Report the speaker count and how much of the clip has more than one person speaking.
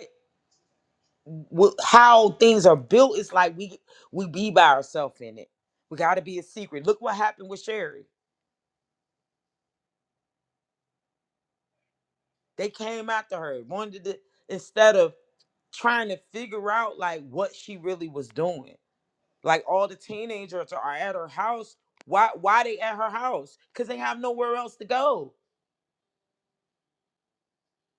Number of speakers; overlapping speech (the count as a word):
one, no overlap